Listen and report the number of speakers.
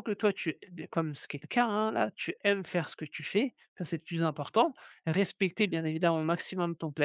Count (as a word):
one